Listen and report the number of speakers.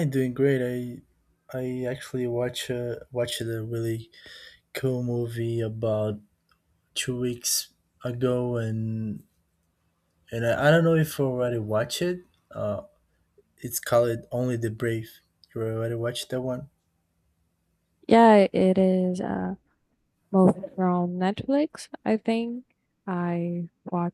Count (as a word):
two